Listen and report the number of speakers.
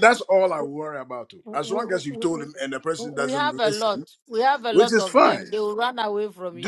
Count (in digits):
2